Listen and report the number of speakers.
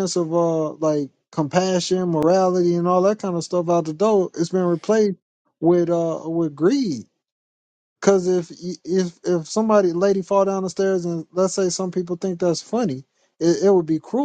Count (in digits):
1